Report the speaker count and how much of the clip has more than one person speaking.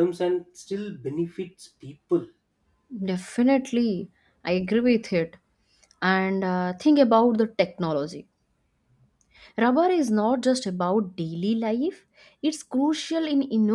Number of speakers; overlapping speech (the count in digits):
2, no overlap